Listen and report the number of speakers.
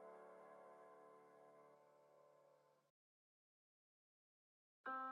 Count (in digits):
0